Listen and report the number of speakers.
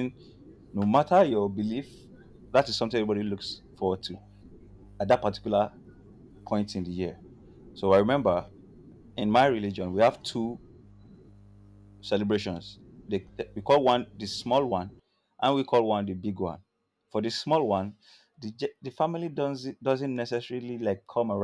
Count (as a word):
one